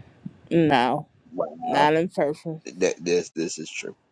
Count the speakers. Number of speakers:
2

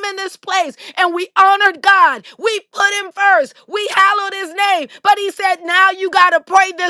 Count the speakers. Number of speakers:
1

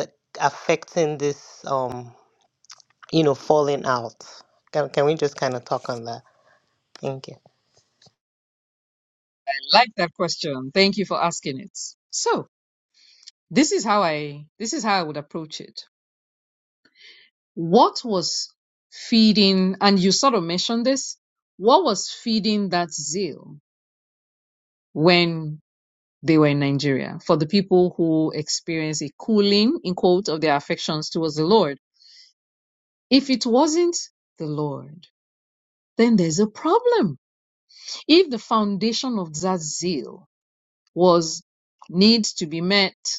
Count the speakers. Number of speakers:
2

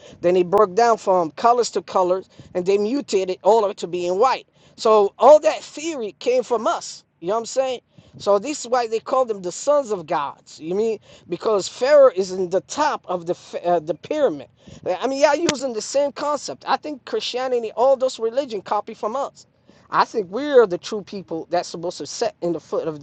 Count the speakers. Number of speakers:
1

